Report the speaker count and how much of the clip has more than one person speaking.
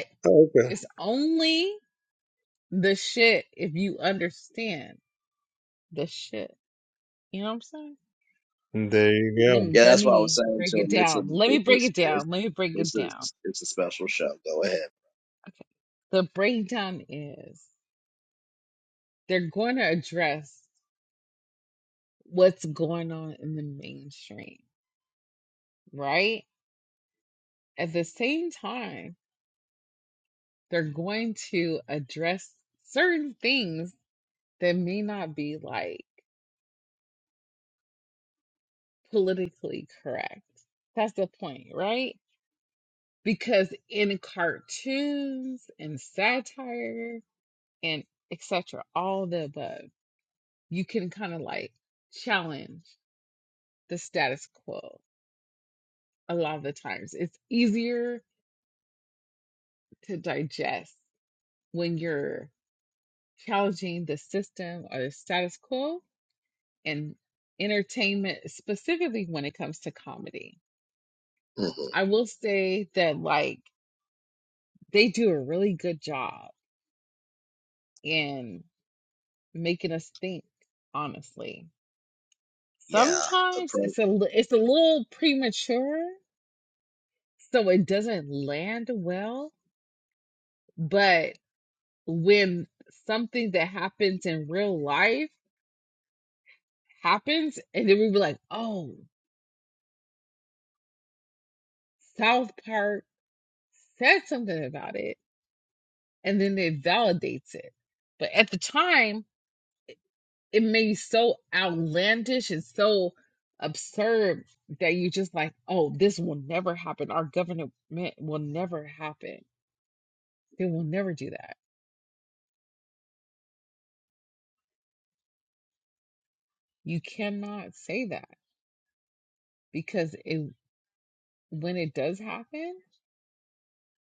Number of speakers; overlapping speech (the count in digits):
3, about 3%